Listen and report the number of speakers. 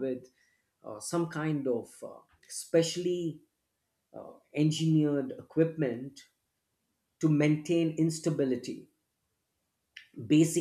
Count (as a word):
one